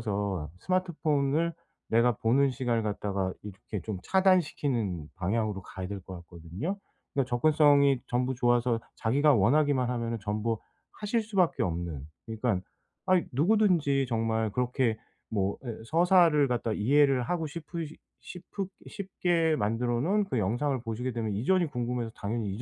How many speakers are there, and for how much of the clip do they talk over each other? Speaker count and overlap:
one, no overlap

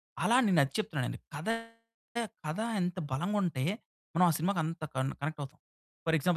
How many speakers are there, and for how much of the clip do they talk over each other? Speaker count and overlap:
one, no overlap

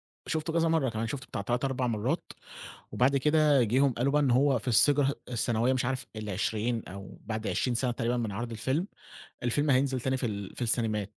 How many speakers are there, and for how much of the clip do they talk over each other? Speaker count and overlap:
one, no overlap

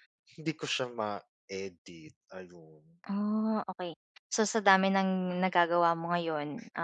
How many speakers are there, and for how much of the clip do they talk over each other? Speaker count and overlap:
two, no overlap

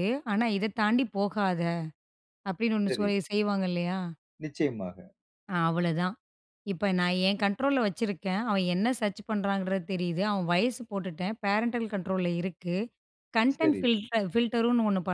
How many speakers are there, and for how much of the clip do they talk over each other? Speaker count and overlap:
two, about 3%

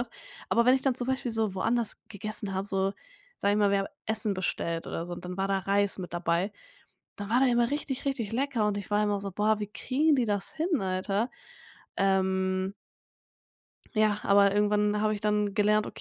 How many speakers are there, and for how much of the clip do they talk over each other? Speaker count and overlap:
one, no overlap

